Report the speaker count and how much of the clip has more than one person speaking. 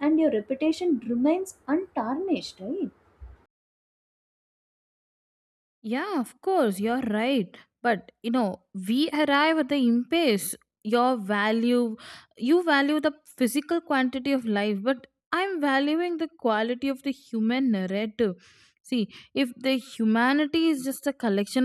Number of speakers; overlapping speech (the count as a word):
two, no overlap